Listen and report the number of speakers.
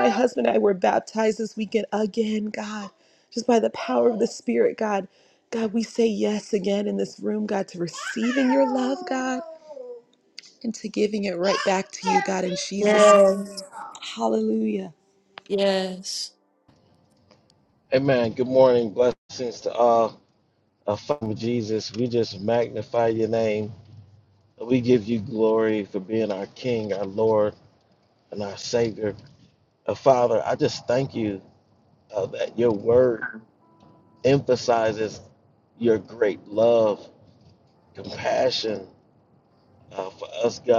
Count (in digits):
3